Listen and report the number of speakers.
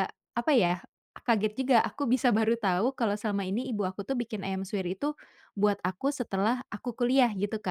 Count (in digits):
1